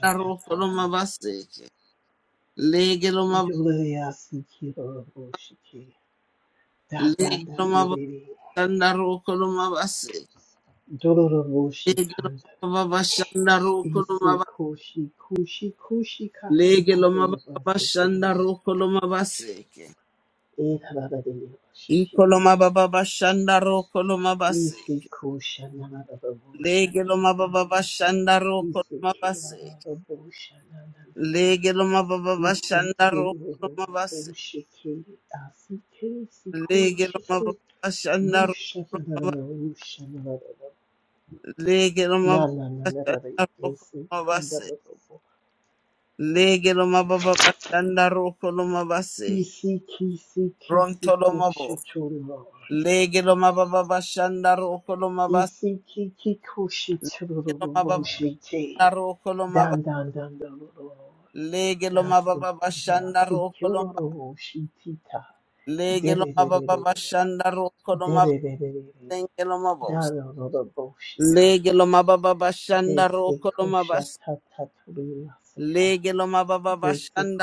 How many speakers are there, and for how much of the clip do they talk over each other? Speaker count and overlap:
two, about 22%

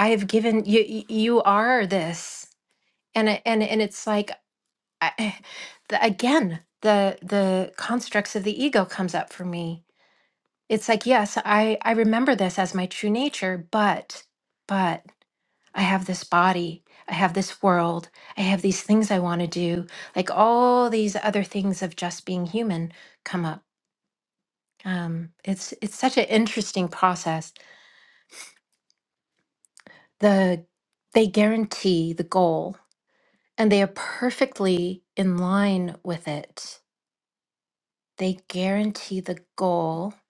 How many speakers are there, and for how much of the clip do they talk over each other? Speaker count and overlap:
one, no overlap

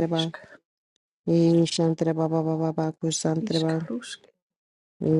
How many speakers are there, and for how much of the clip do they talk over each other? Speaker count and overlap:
two, about 14%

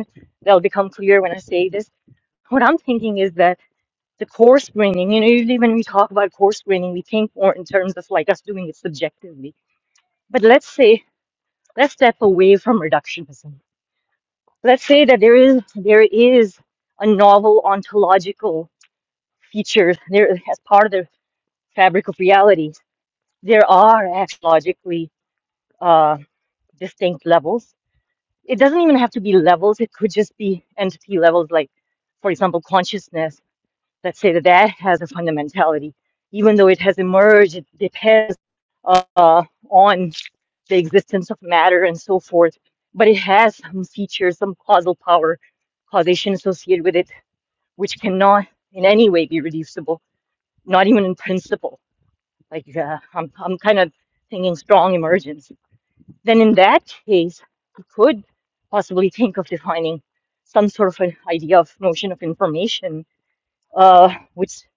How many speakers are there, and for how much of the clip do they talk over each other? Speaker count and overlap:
one, no overlap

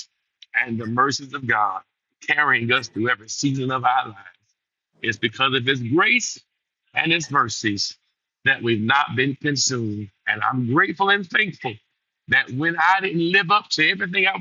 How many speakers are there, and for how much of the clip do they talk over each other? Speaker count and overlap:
one, no overlap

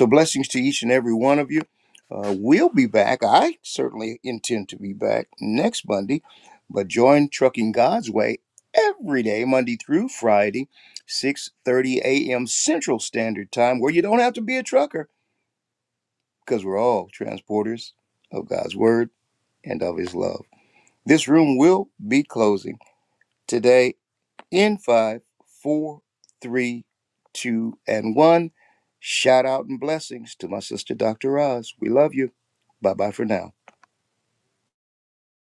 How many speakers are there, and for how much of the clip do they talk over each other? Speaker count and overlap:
one, no overlap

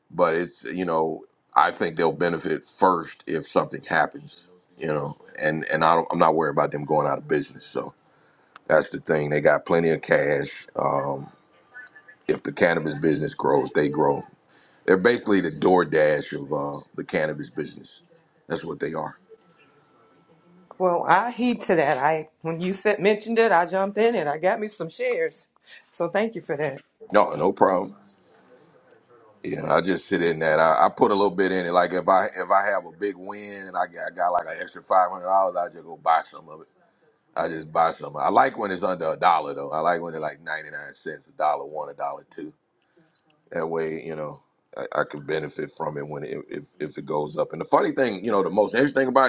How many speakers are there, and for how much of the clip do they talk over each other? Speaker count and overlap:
two, no overlap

